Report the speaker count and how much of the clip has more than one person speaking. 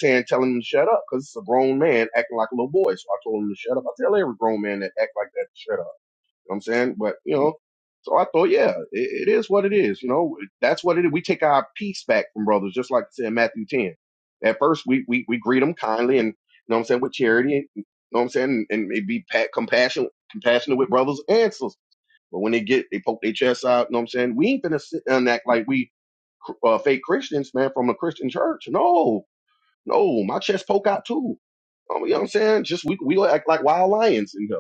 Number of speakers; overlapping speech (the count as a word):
one, no overlap